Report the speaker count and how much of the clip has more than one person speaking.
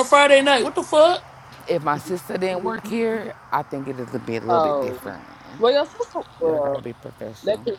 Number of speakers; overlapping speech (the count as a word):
three, about 17%